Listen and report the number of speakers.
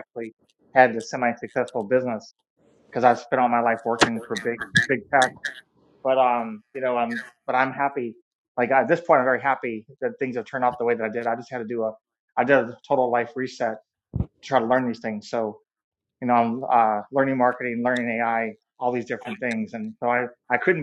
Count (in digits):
1